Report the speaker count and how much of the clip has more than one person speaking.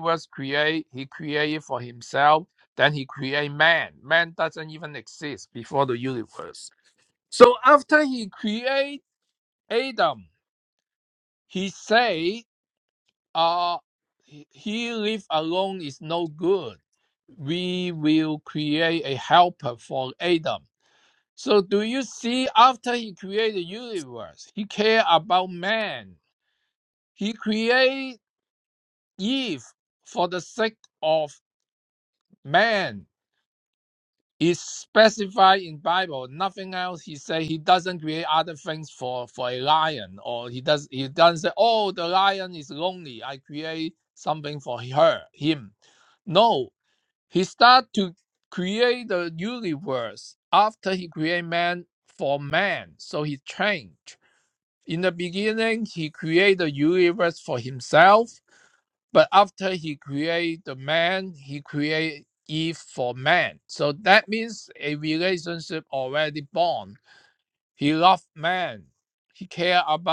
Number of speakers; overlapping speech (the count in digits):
1, no overlap